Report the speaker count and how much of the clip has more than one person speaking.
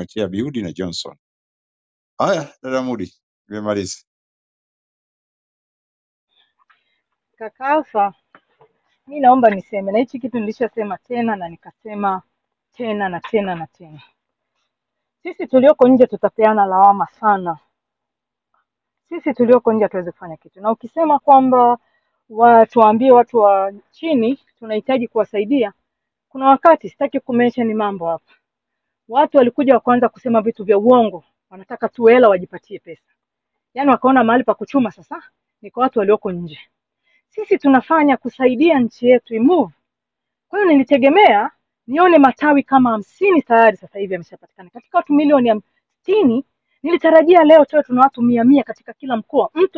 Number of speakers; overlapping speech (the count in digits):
2, no overlap